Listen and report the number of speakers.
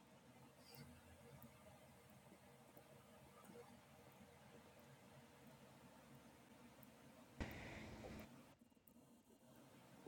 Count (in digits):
0